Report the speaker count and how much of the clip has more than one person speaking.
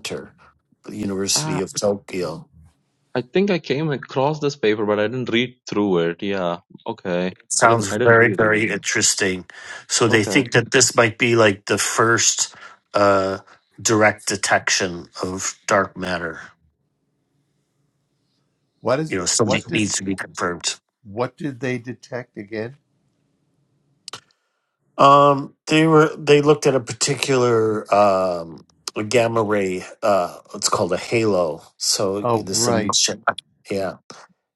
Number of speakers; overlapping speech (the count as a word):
three, about 9%